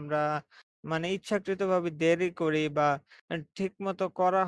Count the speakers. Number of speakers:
one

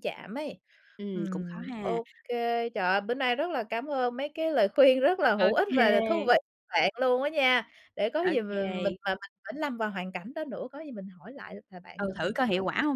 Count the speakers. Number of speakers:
two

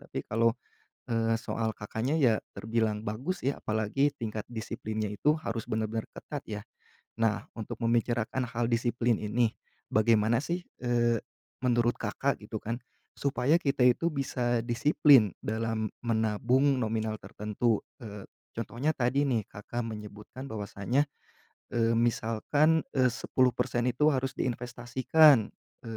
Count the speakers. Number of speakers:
one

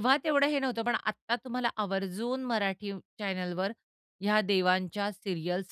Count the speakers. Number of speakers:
one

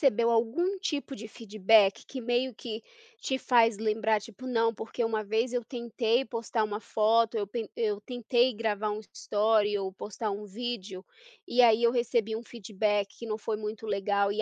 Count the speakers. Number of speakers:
one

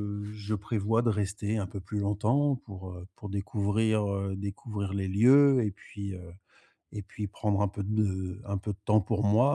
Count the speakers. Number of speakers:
one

